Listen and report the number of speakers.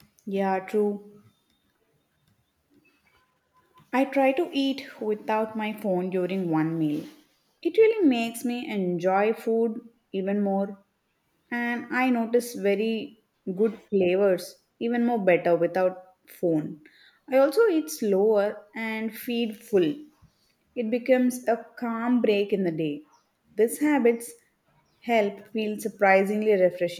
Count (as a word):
one